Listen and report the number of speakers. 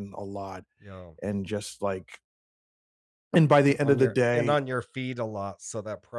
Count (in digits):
2